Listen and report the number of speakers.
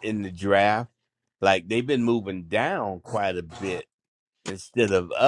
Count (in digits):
1